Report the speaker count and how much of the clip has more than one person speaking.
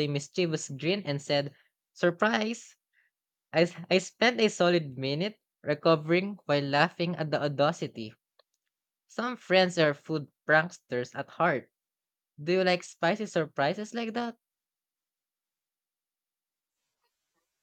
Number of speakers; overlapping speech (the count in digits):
1, no overlap